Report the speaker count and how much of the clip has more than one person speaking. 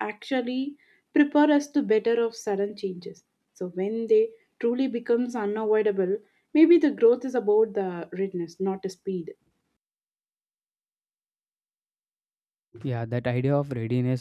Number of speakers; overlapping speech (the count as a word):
two, no overlap